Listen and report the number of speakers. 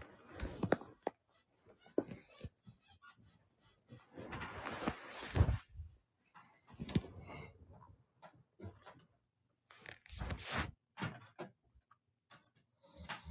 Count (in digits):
0